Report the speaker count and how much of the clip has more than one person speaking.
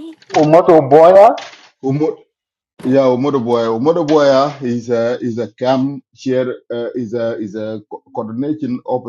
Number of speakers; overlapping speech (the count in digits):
2, no overlap